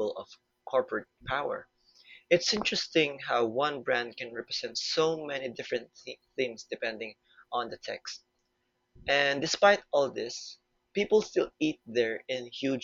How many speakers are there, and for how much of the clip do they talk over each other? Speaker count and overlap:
1, no overlap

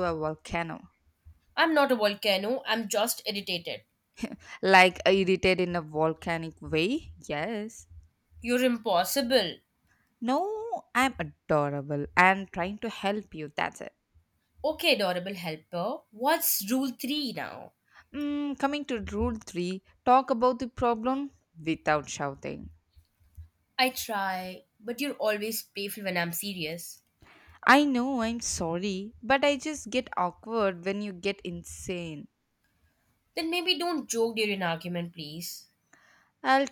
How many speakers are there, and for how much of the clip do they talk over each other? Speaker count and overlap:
2, no overlap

